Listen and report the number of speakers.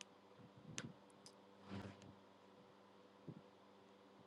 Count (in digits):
0